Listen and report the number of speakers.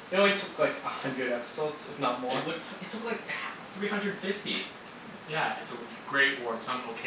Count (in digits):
3